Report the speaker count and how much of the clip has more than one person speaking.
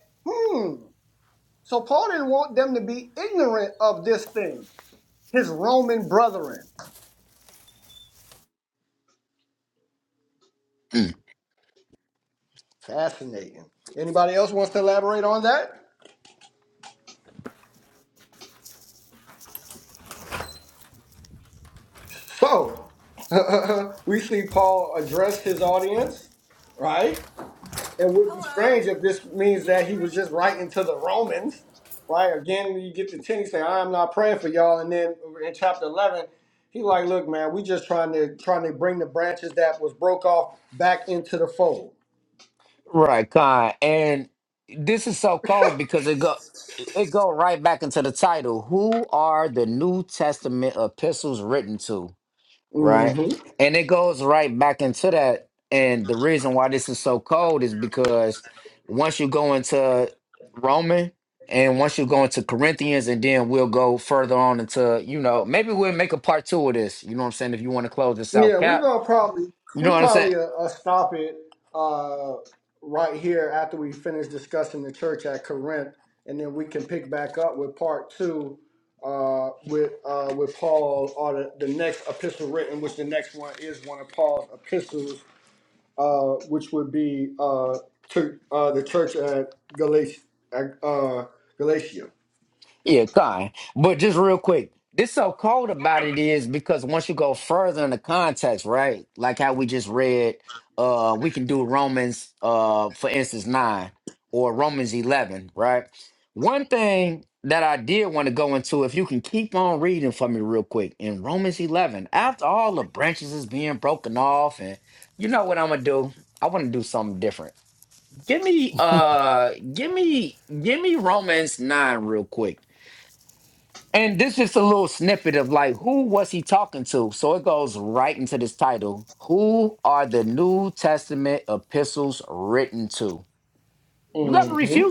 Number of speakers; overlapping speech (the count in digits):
2, about 2%